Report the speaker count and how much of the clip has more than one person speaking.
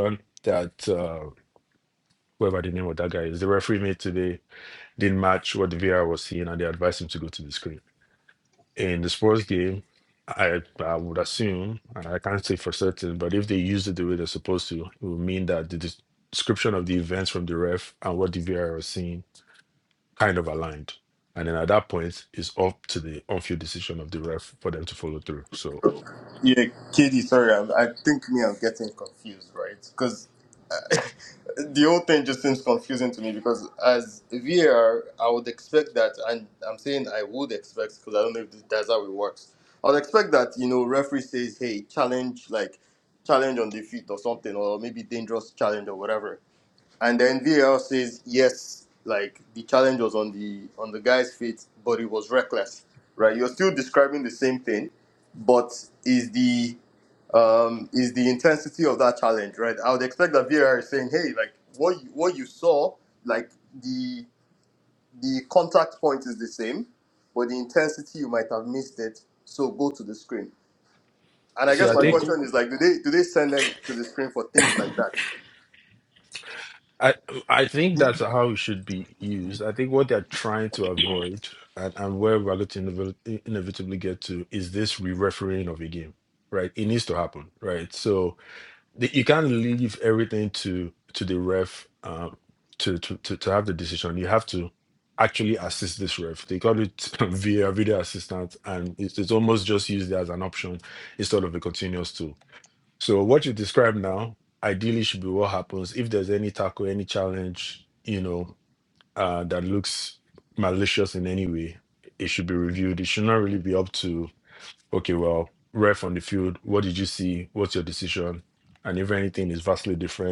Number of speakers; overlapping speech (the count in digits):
2, under 1%